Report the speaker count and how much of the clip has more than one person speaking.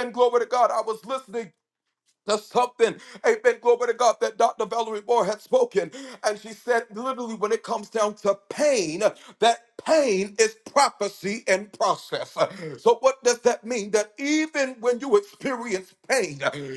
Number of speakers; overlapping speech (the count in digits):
1, no overlap